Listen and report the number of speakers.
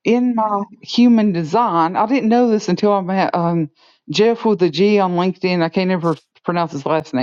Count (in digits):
1